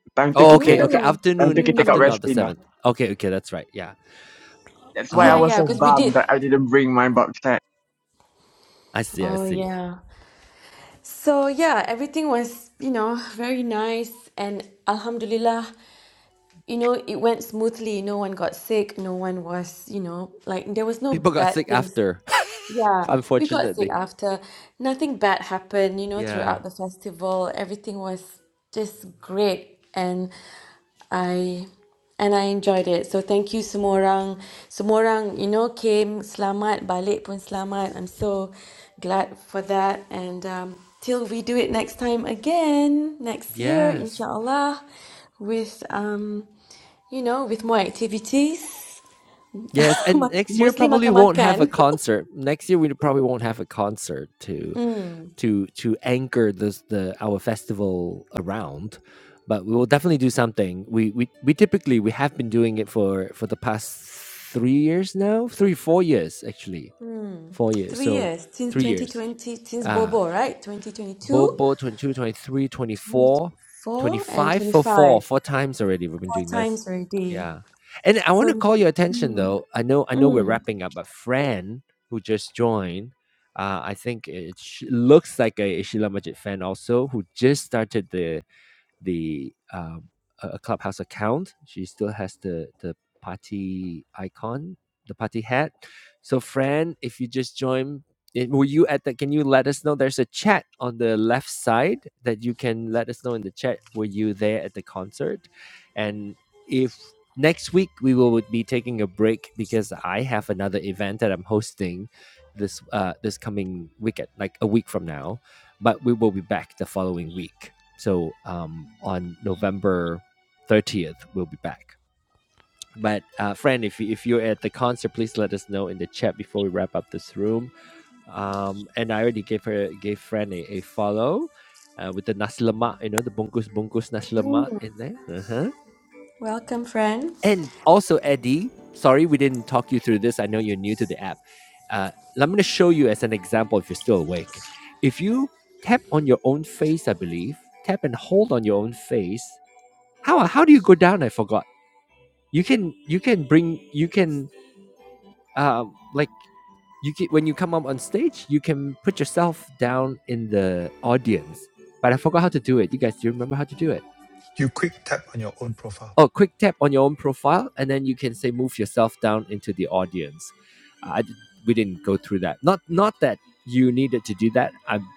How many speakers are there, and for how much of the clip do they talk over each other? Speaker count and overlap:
four, about 7%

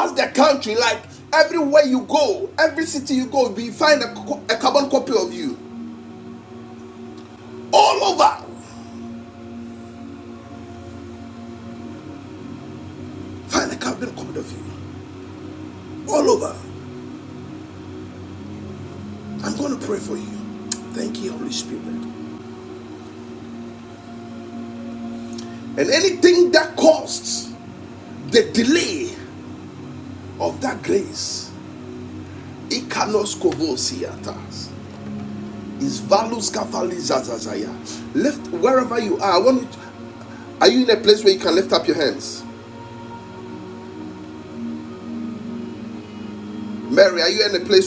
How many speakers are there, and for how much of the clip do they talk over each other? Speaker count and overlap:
one, no overlap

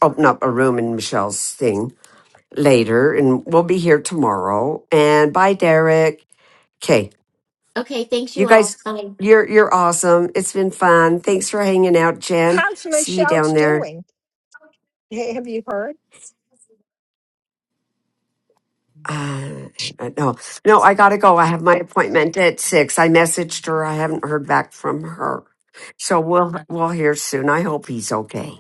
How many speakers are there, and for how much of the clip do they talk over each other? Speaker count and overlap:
three, about 4%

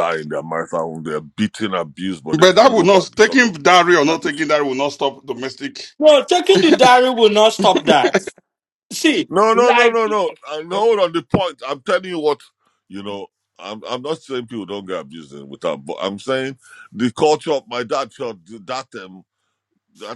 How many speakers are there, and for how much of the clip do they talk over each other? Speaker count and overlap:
three, about 10%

